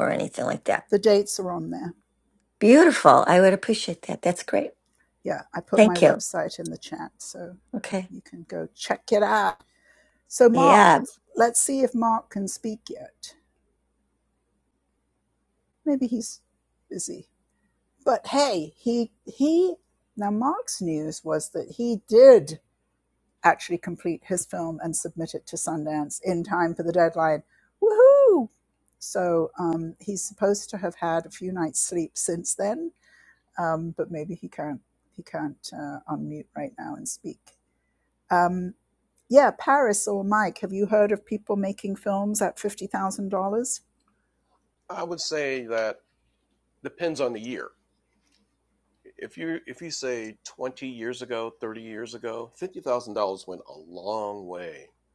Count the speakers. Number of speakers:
three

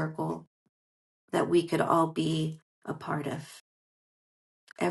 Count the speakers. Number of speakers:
one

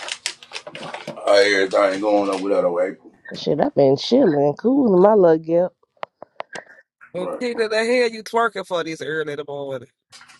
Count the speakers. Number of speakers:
three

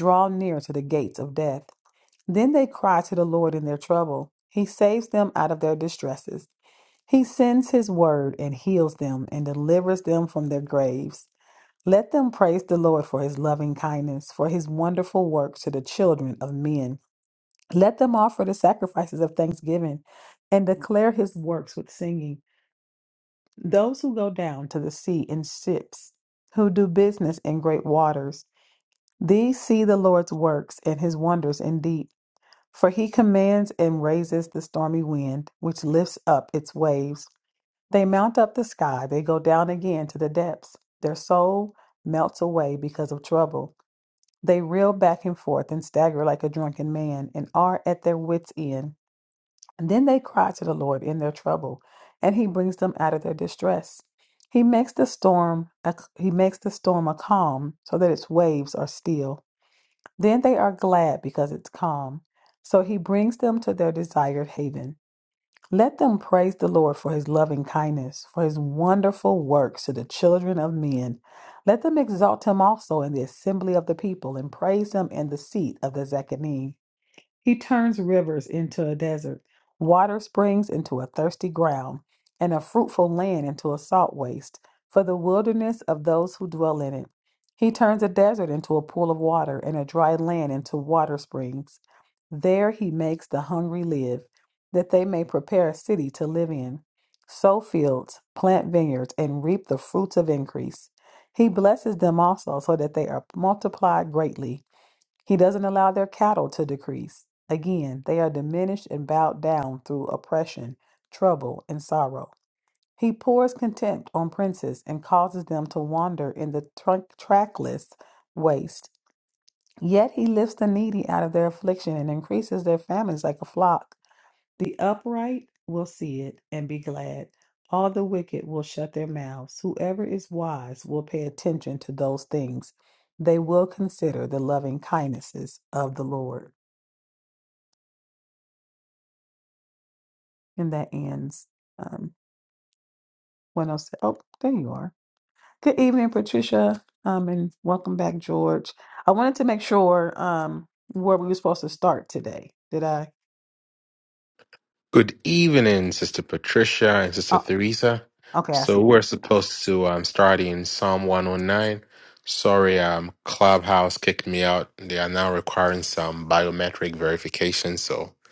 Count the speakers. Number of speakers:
two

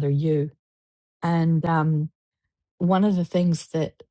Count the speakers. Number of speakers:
one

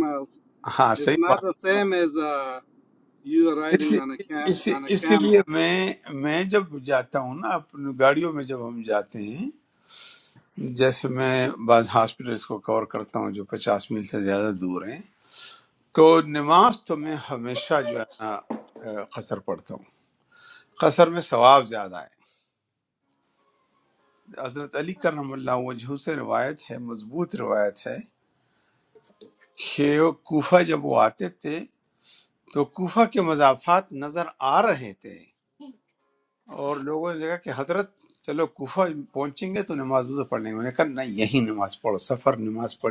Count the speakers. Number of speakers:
two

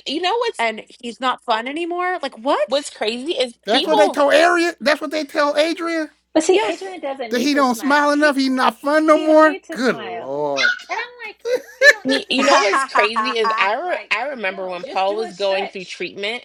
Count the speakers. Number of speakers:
four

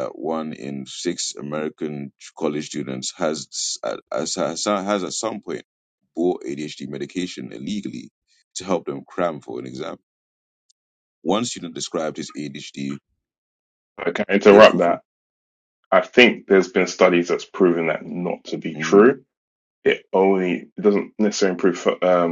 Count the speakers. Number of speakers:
two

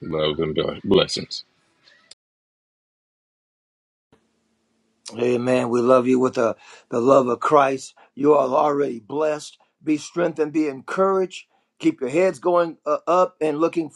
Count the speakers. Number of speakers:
two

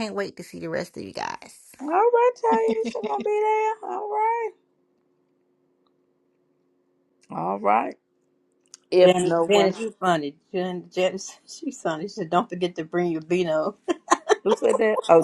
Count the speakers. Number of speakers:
three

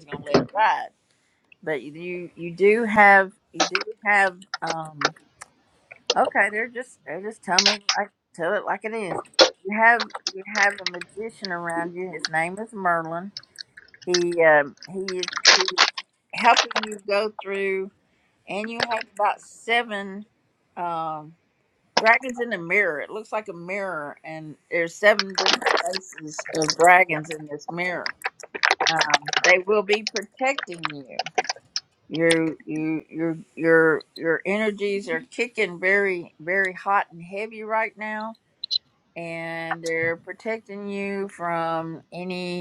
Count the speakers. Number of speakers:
one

